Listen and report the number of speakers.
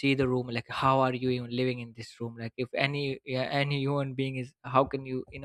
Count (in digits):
1